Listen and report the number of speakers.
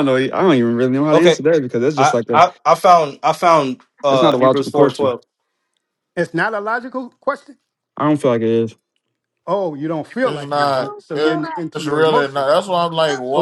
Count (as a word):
four